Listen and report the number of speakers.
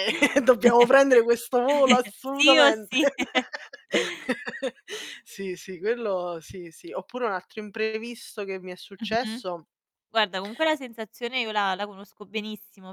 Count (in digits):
2